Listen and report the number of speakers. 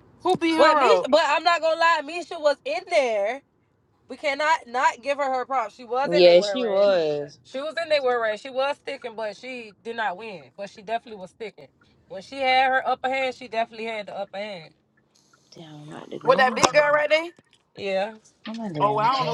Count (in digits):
3